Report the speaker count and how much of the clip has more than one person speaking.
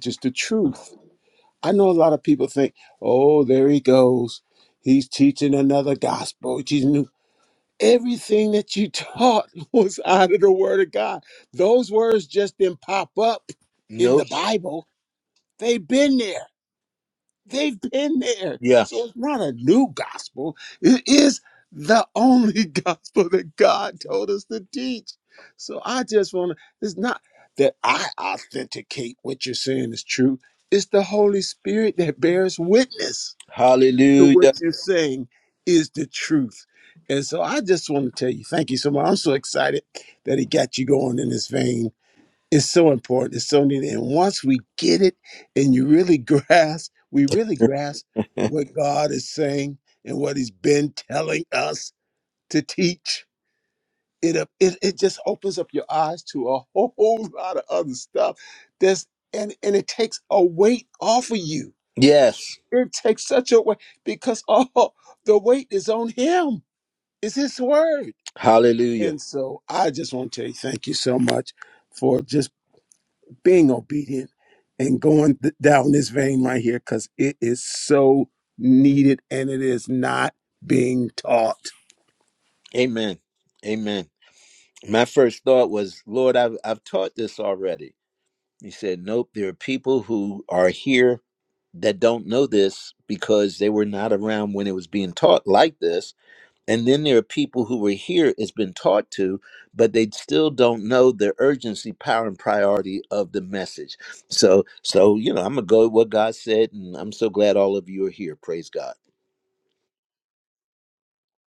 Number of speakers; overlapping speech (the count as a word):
two, about 1%